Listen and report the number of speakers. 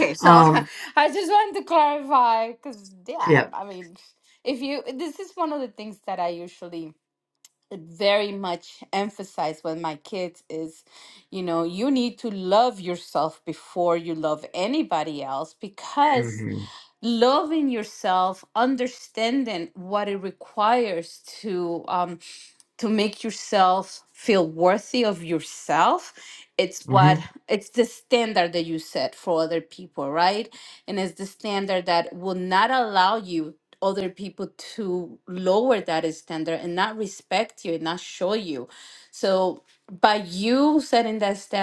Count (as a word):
two